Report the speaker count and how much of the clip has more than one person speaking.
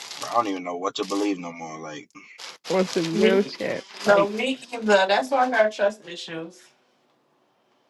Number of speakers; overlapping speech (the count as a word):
three, about 9%